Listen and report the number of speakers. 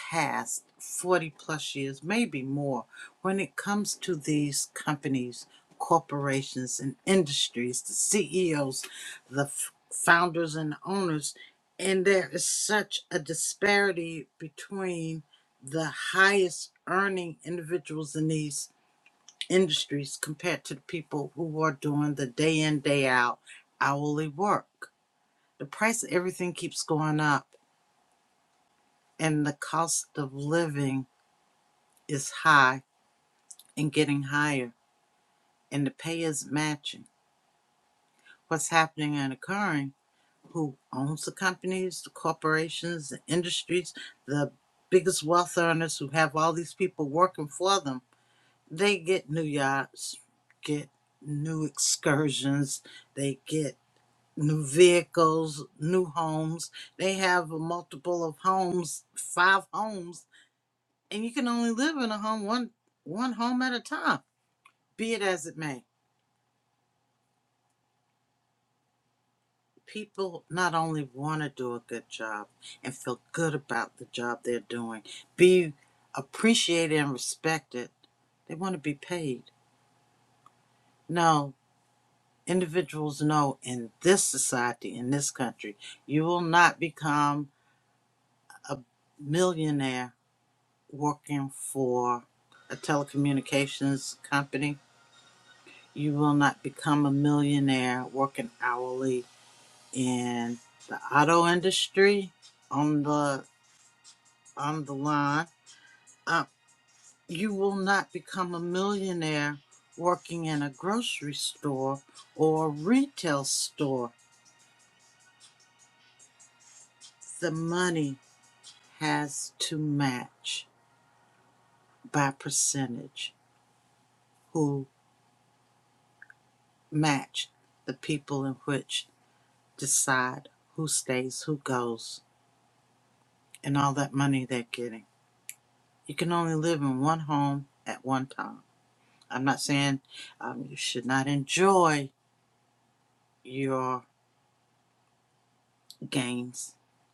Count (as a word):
one